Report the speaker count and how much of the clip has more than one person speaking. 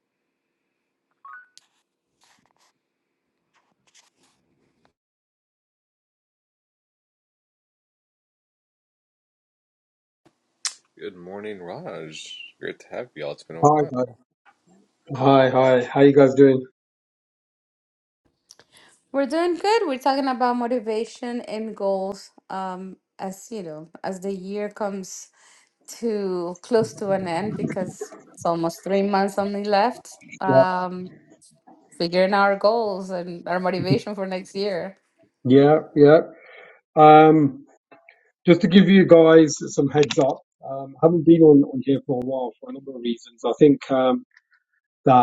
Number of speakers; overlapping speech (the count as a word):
three, about 1%